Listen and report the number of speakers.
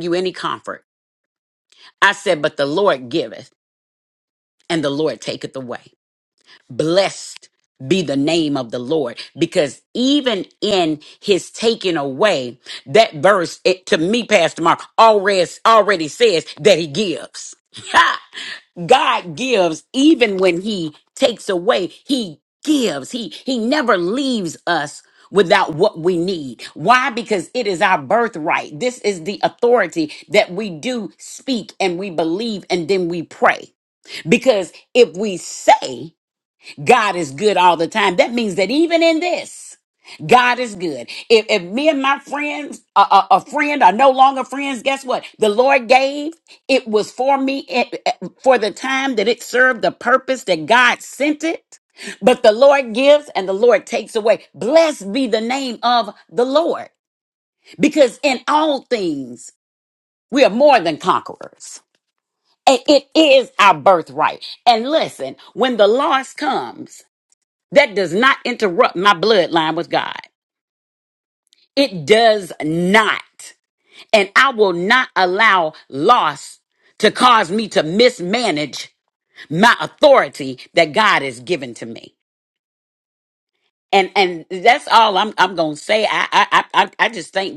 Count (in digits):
1